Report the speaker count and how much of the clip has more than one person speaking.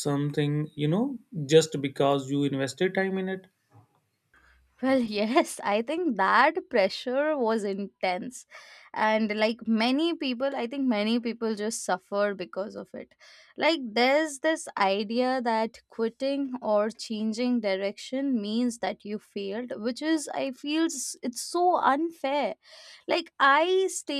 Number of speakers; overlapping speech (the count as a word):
two, no overlap